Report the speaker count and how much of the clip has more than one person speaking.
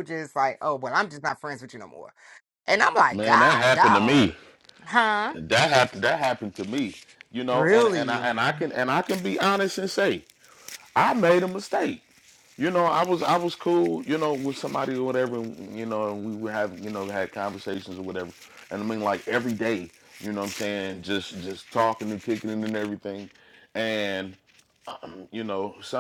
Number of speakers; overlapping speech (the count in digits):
2, about 7%